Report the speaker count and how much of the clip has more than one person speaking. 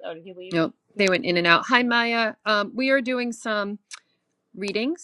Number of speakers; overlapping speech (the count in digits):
2, about 22%